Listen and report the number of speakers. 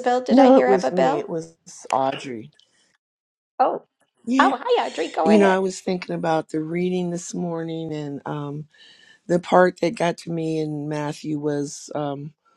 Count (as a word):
two